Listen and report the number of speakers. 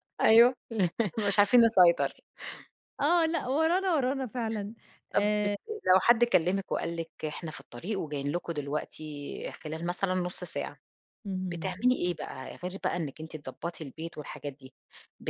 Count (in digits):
2